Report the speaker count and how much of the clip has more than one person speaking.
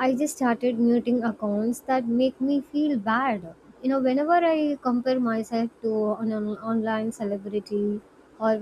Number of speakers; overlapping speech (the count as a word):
one, no overlap